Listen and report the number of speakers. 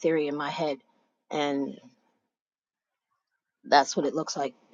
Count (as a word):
one